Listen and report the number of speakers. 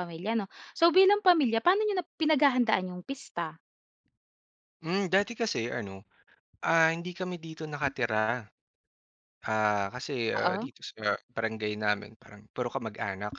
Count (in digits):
2